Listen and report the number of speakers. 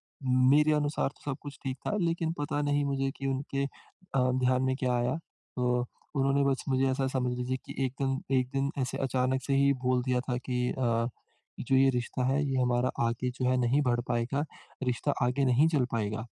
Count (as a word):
one